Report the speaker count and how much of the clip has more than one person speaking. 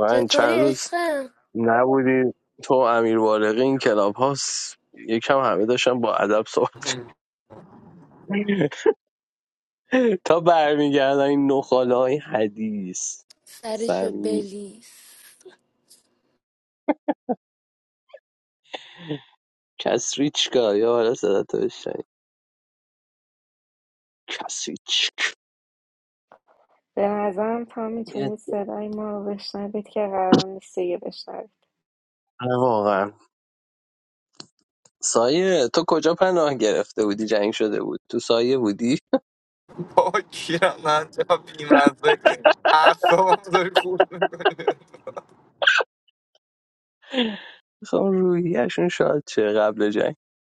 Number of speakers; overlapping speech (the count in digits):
4, about 3%